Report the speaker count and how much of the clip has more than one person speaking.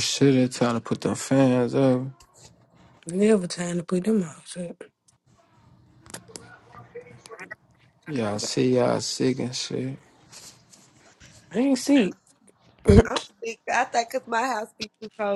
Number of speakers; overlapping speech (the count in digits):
3, no overlap